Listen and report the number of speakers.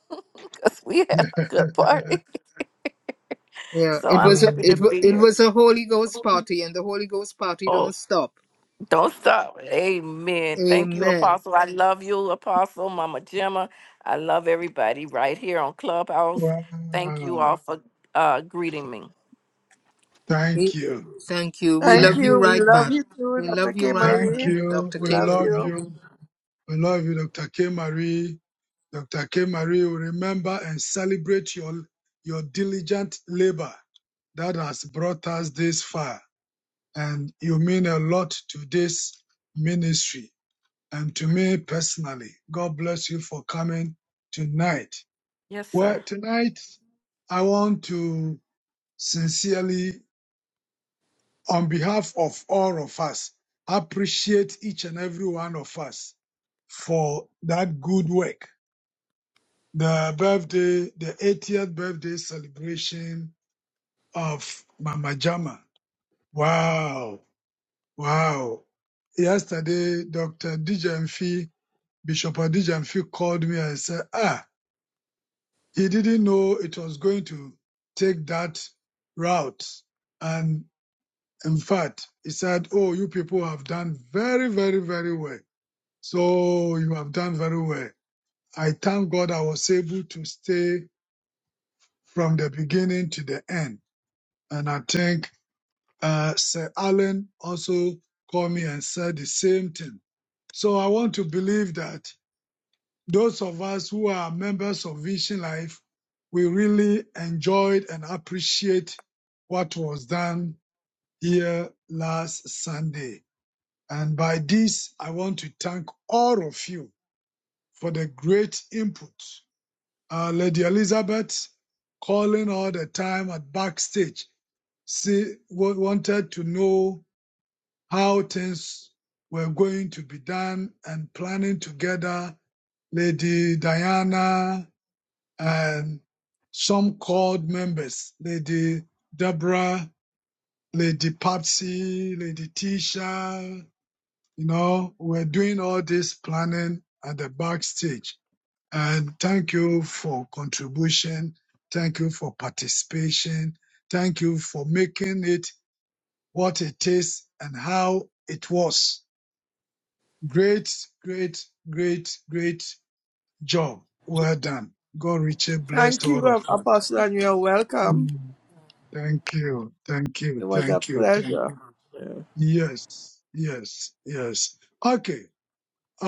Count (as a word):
four